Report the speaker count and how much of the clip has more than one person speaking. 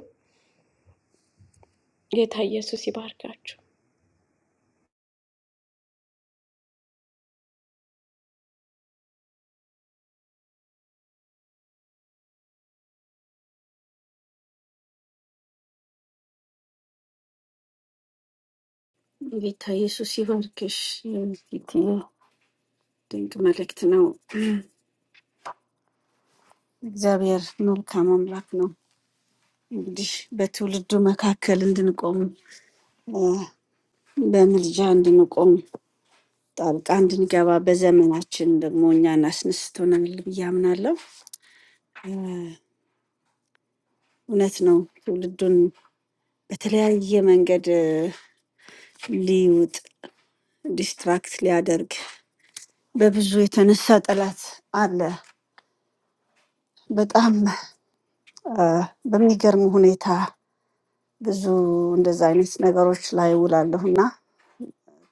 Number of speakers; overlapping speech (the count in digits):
2, no overlap